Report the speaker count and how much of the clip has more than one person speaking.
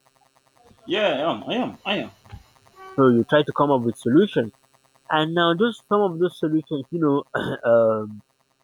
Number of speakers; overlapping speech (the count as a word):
two, no overlap